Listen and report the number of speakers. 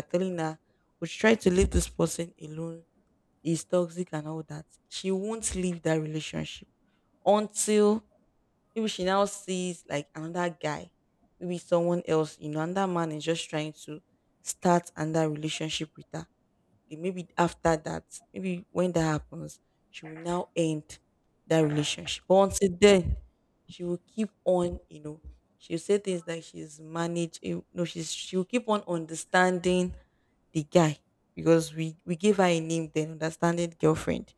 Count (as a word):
one